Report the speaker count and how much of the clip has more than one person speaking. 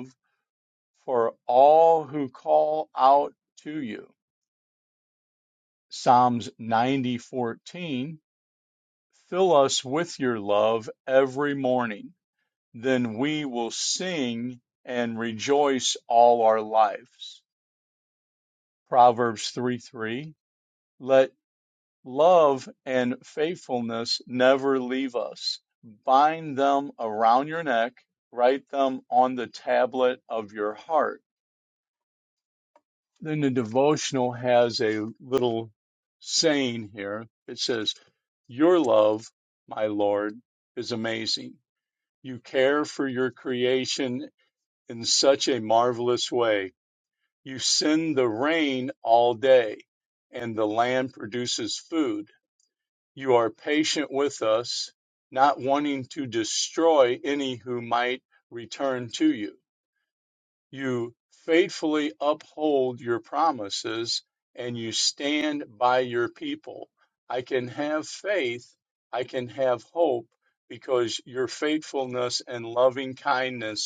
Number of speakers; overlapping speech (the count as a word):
one, no overlap